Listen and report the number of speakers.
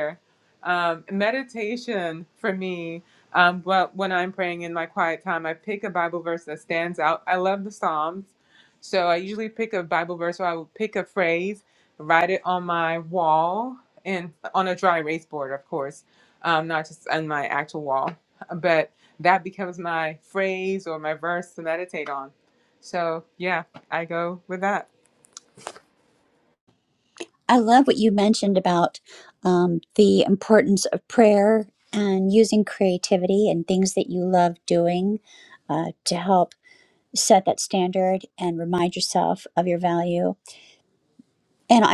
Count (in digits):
2